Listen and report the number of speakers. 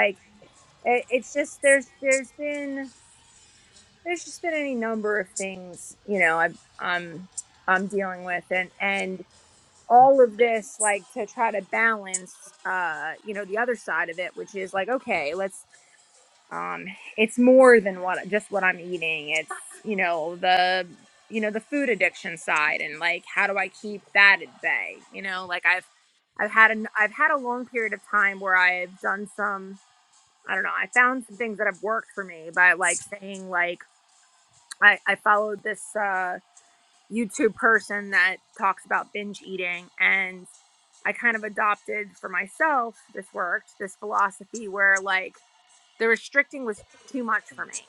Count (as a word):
one